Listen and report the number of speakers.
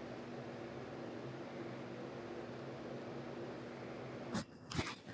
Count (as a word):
zero